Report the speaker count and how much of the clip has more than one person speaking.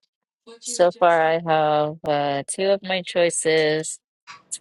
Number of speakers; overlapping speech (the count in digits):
1, no overlap